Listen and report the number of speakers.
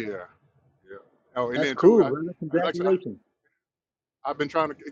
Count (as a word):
two